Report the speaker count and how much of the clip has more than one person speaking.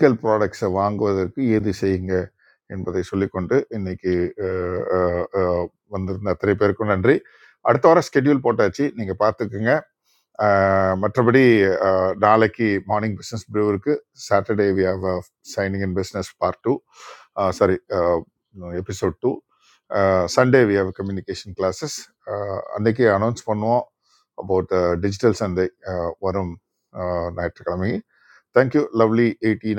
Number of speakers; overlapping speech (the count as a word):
one, no overlap